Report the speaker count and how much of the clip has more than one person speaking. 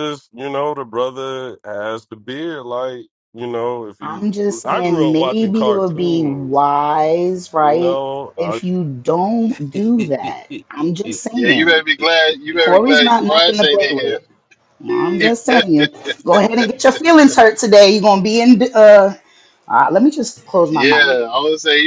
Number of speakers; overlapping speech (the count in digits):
3, about 26%